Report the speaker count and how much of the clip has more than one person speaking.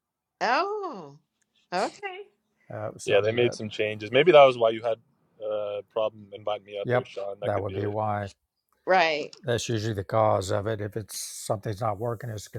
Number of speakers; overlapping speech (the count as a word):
three, about 10%